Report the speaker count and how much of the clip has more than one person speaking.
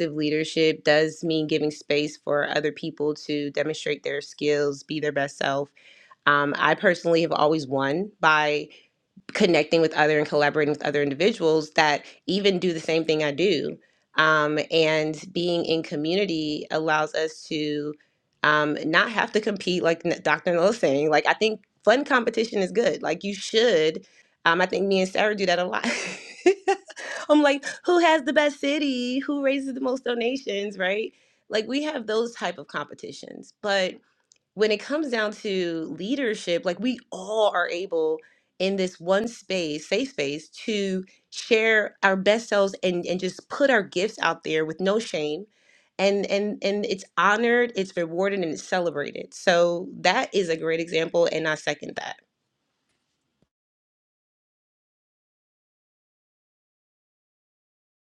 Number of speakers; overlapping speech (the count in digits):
1, no overlap